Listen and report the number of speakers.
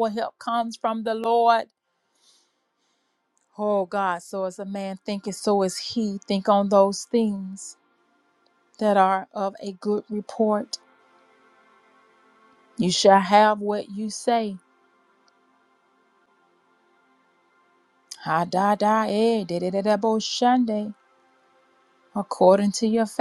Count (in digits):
1